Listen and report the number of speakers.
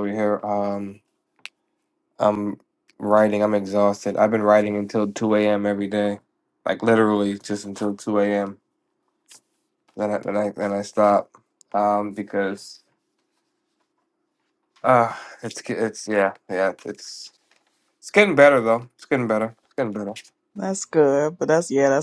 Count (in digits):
2